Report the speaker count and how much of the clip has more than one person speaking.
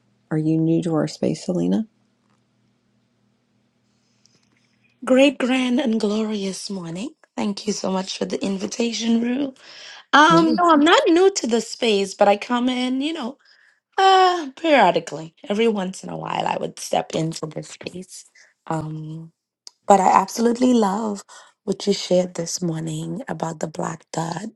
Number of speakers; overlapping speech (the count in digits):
2, about 1%